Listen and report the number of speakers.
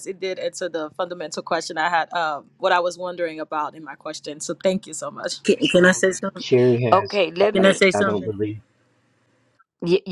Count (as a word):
four